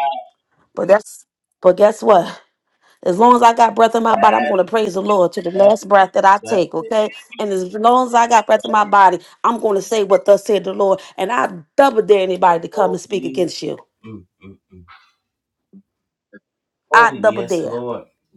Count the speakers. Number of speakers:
two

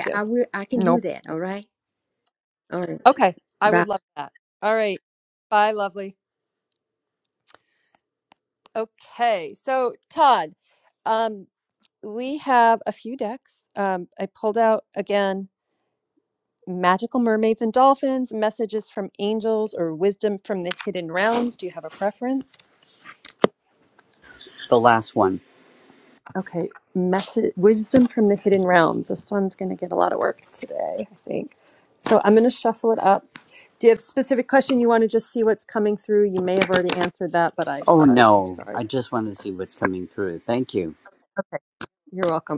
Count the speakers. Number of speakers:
three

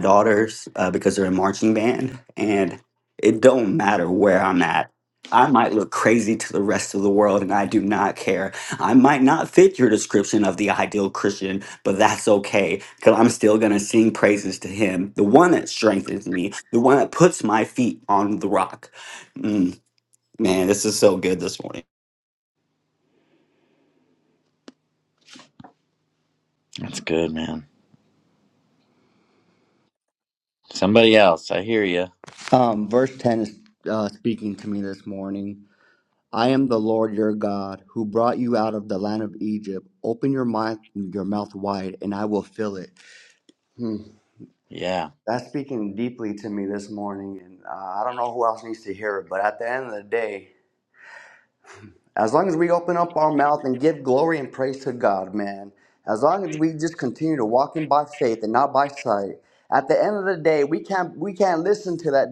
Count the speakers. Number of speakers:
three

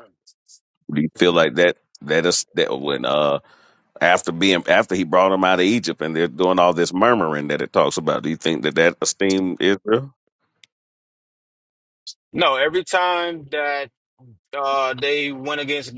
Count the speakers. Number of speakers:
two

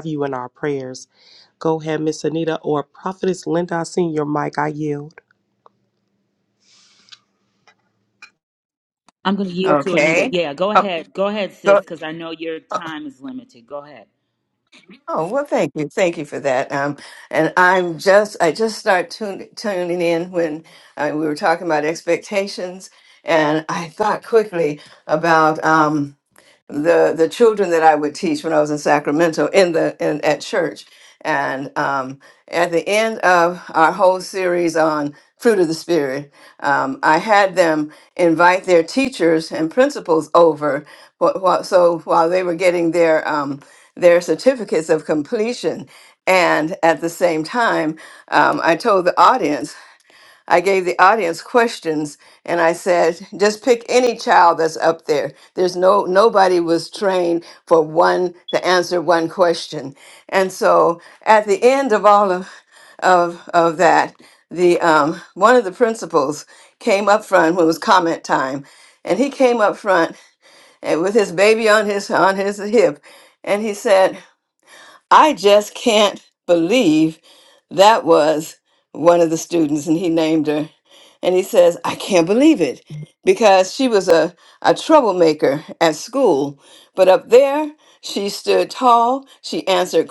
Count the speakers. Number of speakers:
three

